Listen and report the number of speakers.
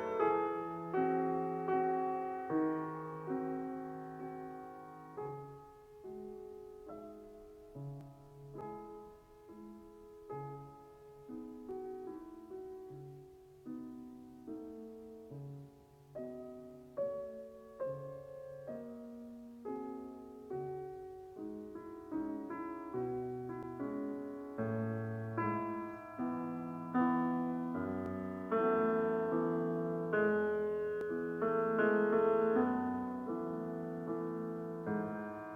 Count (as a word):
zero